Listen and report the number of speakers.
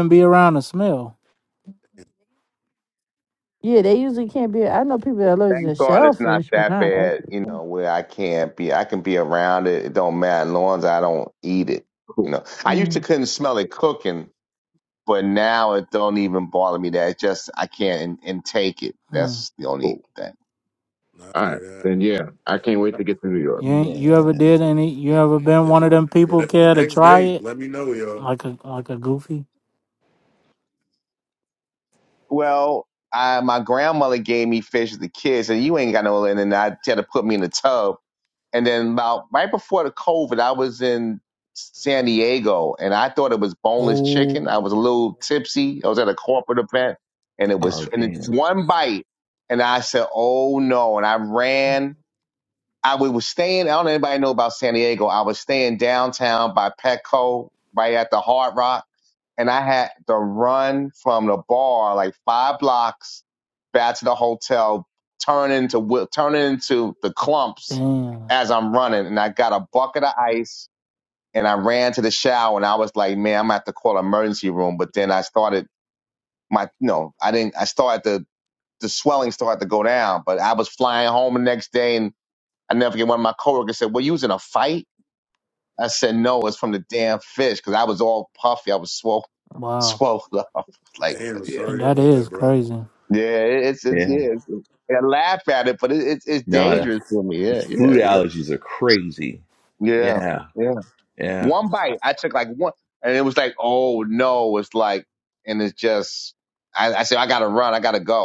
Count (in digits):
6